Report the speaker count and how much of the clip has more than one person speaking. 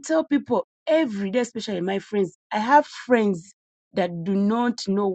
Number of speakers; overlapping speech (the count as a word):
one, no overlap